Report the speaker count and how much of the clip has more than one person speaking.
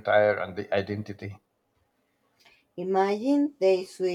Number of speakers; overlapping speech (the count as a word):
two, no overlap